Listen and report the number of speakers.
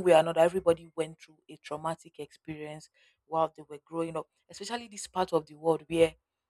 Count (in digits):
1